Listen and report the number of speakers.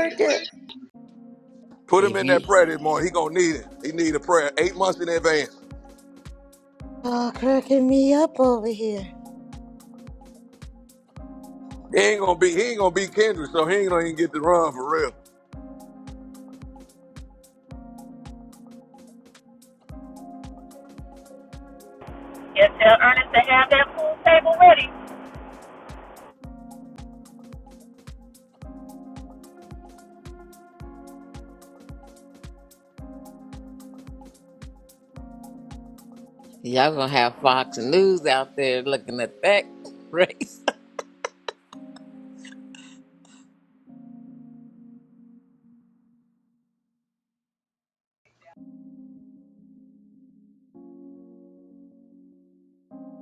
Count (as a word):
four